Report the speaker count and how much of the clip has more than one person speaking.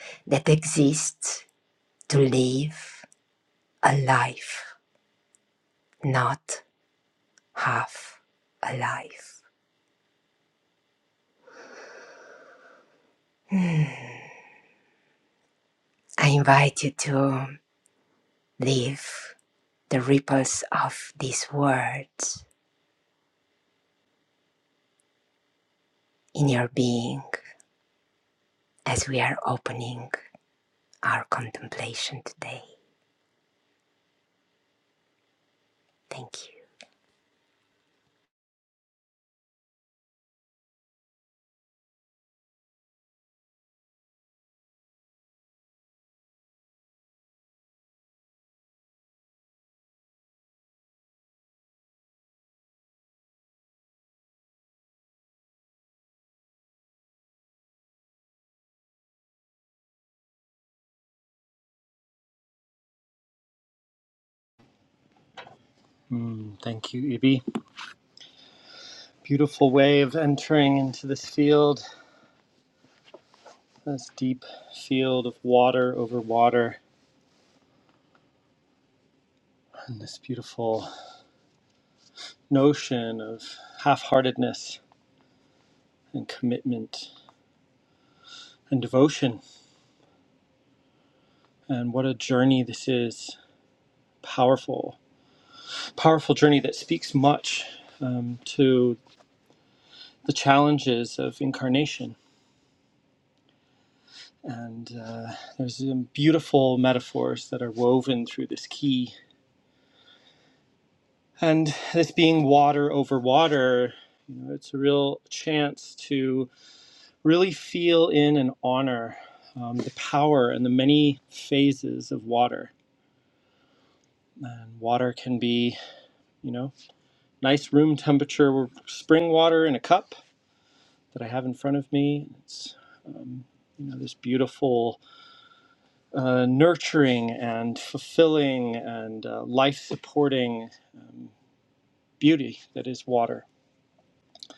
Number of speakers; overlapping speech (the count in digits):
2, no overlap